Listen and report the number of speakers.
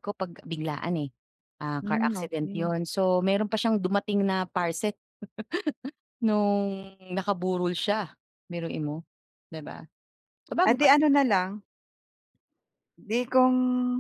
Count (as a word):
two